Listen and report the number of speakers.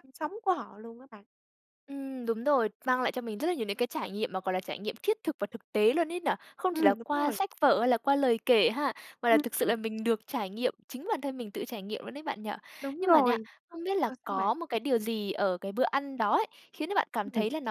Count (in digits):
2